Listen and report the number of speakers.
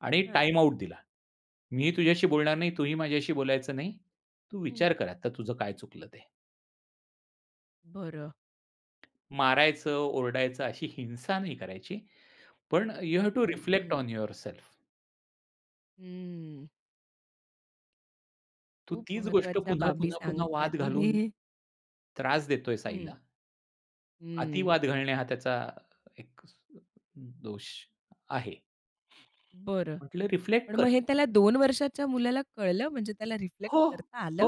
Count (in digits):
2